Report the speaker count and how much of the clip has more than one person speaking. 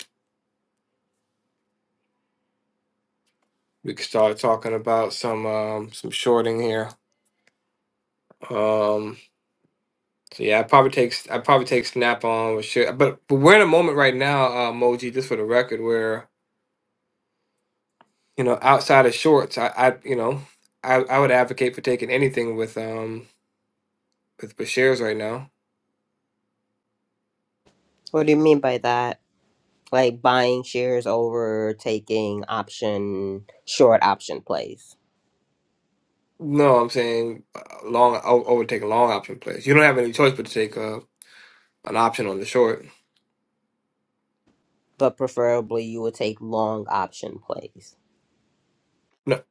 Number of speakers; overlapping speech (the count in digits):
2, no overlap